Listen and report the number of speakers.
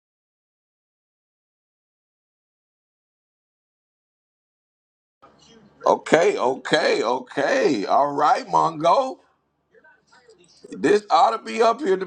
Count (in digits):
1